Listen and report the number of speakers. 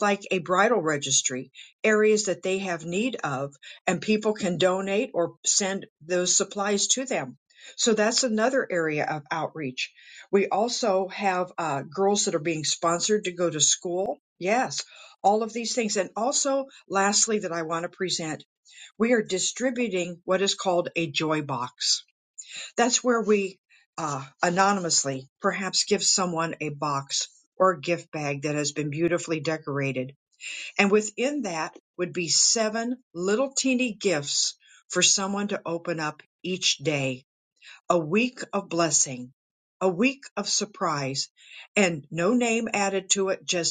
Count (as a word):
one